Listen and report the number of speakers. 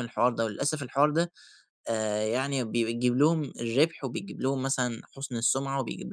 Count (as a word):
one